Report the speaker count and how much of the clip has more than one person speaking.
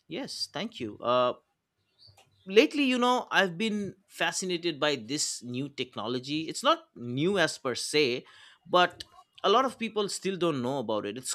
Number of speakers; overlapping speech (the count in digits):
1, no overlap